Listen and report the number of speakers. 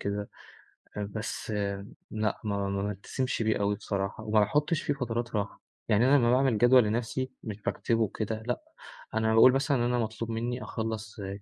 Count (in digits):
1